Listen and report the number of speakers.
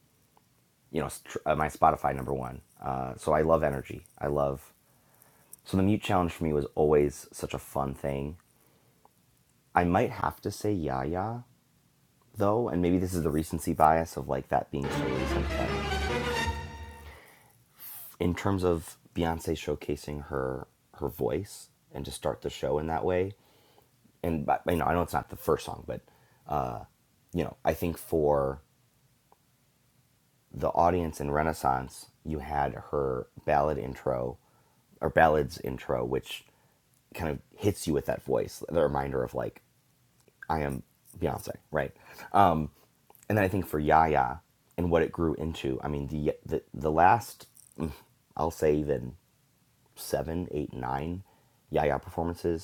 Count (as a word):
one